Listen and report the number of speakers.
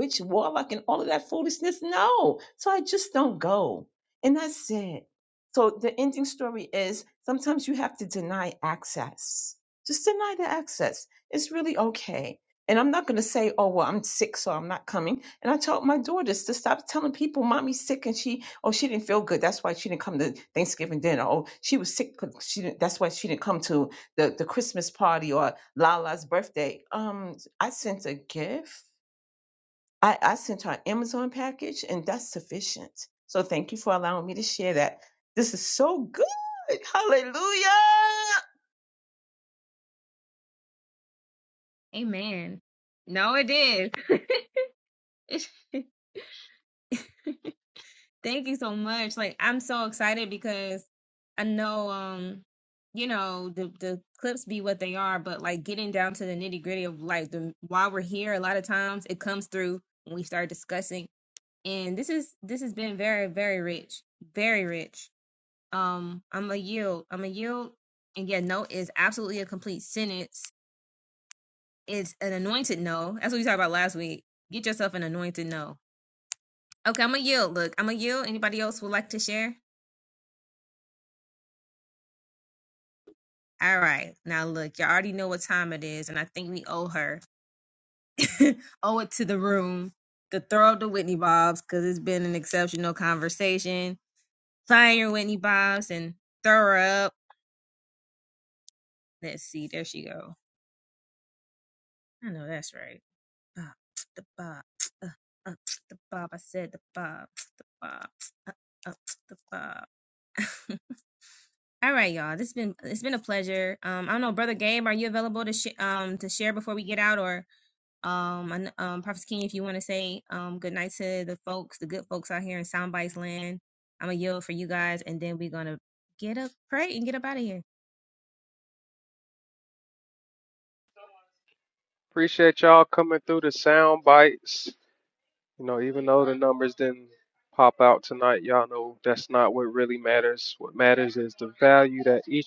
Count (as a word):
three